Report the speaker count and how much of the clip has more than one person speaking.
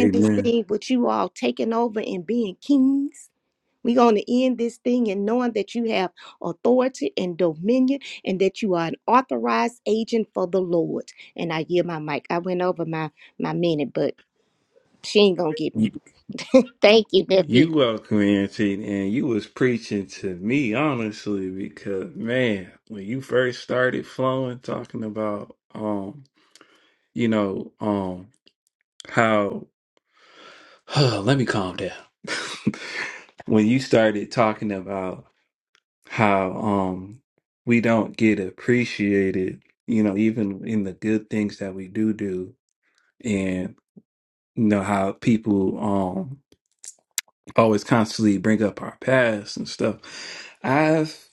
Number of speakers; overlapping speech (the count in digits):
2, about 2%